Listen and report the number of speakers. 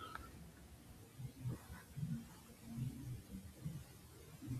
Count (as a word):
zero